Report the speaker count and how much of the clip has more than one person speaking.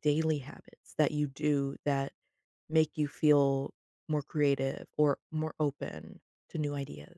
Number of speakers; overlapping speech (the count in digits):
1, no overlap